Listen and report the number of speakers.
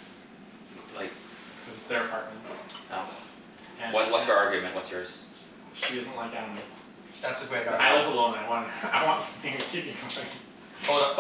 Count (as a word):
three